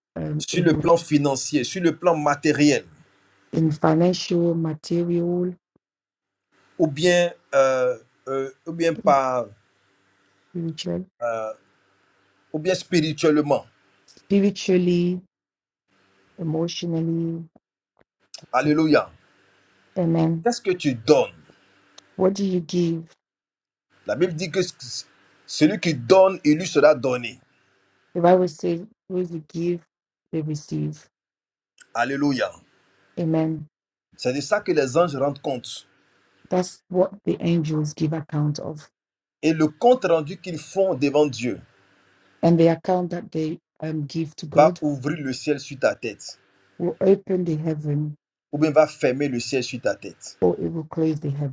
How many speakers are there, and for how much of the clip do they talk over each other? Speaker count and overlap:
two, about 2%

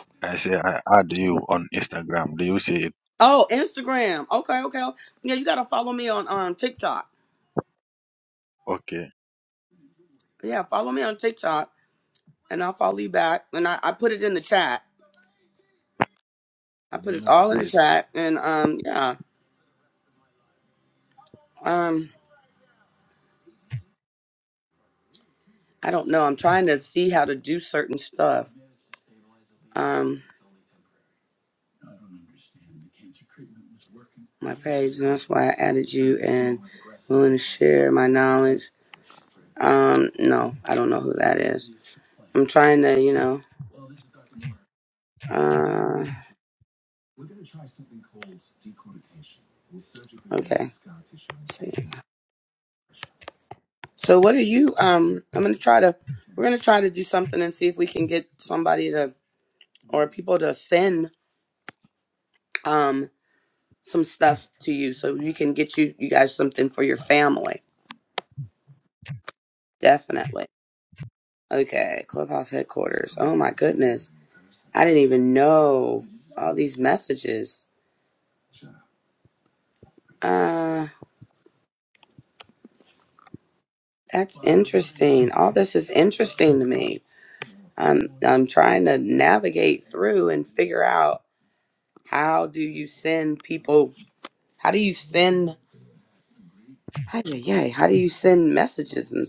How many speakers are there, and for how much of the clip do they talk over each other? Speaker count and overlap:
two, about 1%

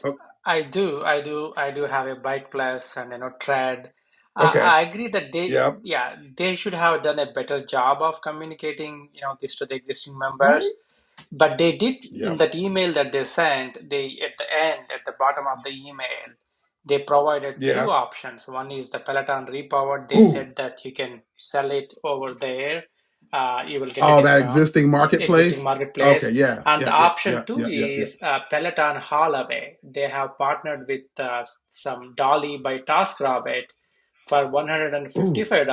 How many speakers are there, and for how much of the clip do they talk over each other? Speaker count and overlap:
two, about 14%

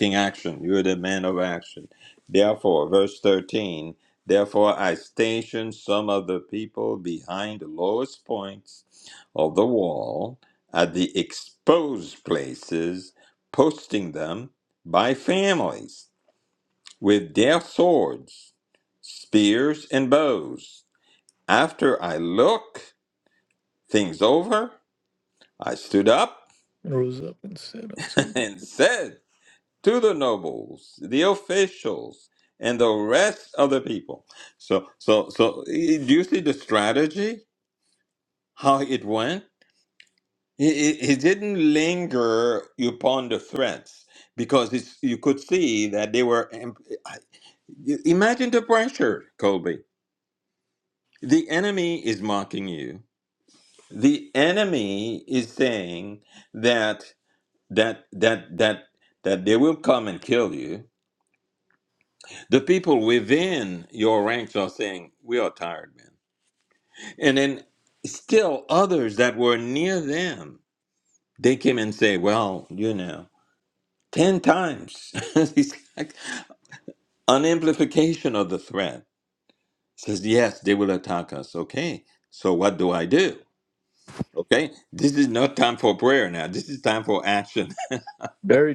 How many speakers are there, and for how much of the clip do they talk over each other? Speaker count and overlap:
two, no overlap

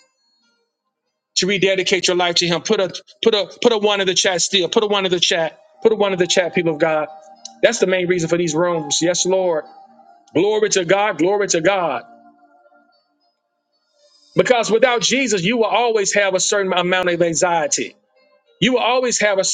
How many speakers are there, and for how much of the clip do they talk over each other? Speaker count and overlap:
one, no overlap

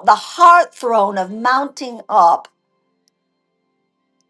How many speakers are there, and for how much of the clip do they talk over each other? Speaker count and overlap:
one, no overlap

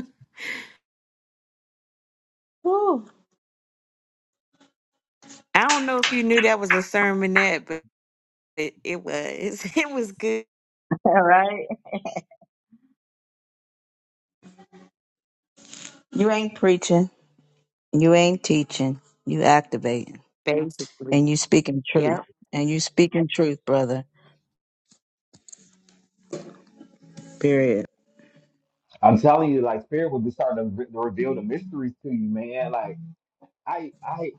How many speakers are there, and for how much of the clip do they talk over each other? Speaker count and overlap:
three, about 1%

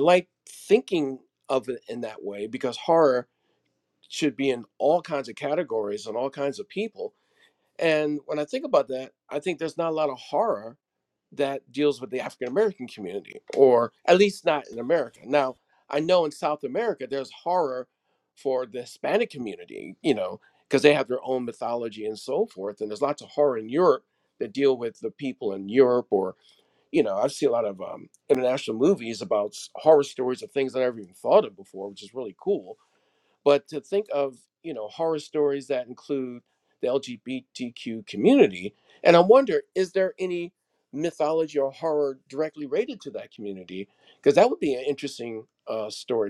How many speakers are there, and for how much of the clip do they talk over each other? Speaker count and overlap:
one, no overlap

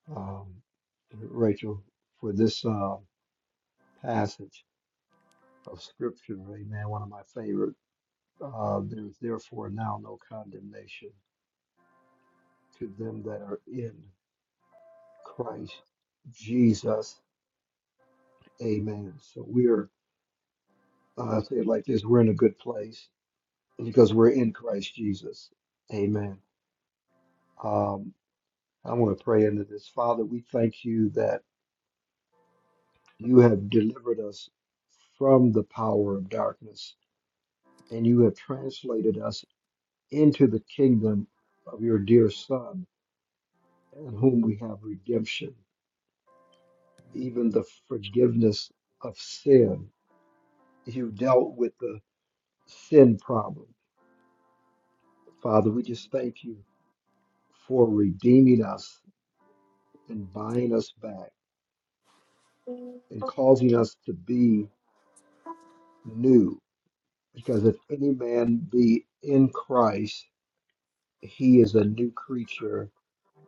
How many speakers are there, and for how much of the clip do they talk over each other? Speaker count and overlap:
one, no overlap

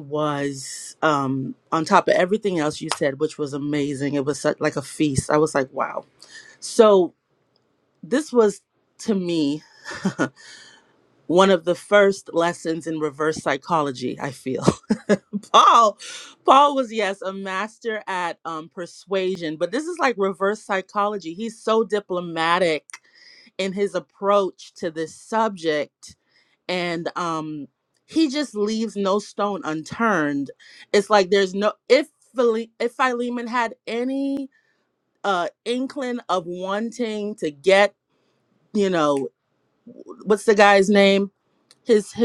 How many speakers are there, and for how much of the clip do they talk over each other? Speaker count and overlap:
one, no overlap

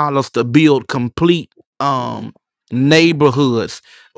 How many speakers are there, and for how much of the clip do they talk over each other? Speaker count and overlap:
one, no overlap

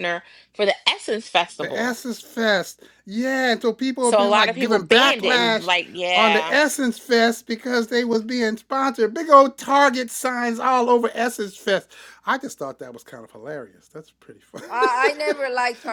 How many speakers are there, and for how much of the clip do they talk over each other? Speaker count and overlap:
three, about 15%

